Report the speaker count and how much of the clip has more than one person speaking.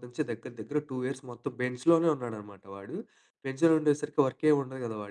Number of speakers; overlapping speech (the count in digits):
1, no overlap